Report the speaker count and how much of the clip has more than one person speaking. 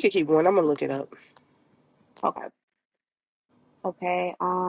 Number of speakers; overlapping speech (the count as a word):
two, no overlap